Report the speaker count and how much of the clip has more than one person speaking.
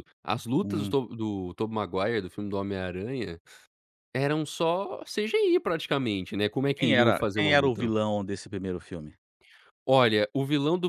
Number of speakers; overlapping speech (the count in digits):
2, about 14%